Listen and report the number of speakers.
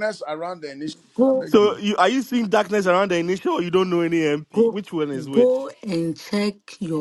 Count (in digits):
3